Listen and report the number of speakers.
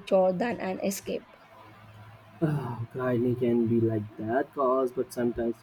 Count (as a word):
two